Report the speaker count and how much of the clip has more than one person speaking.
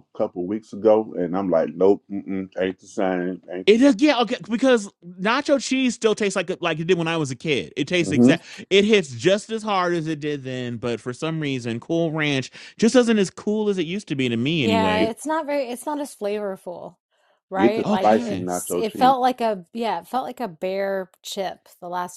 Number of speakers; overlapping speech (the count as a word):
three, about 11%